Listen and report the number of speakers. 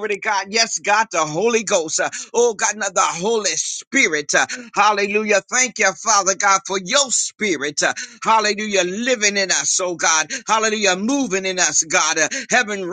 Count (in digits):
1